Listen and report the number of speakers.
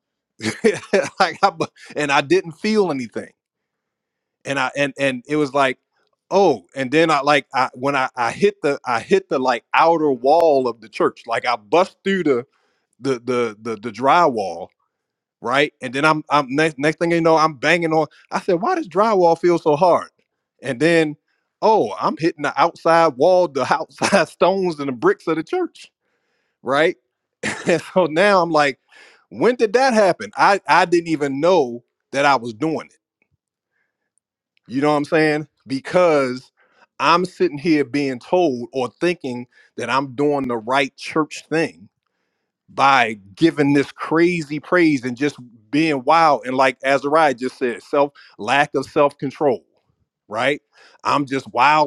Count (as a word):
one